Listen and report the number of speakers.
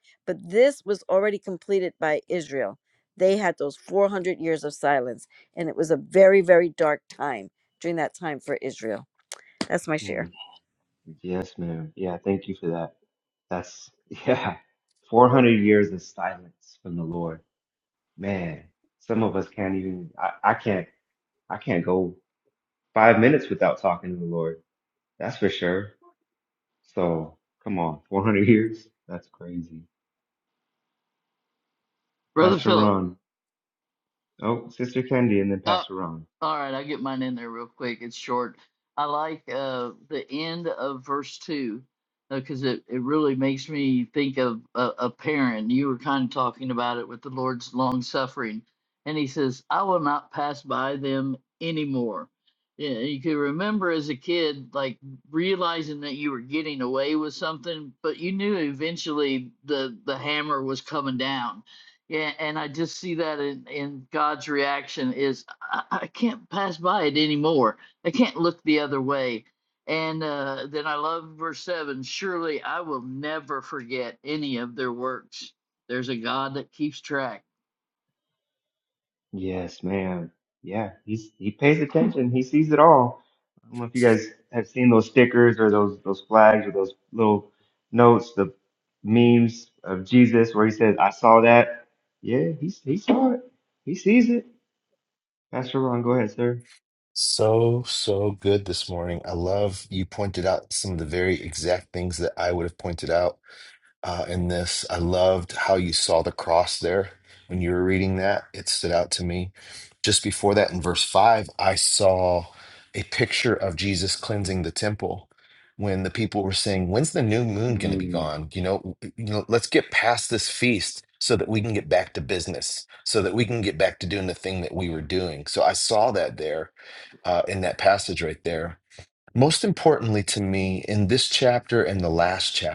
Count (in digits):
4